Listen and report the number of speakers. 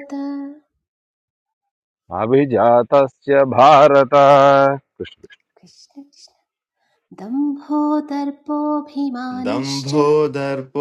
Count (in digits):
3